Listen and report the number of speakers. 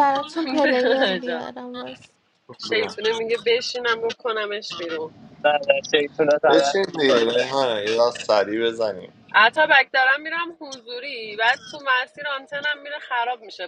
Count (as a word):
four